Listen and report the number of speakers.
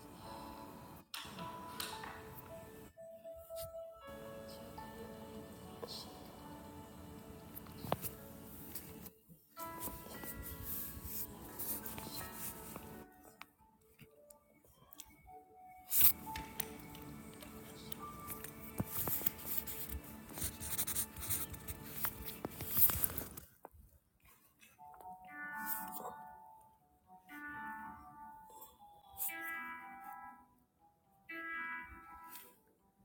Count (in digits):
0